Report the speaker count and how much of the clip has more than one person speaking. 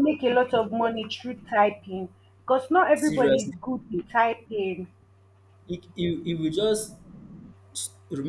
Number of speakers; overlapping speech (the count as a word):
two, about 6%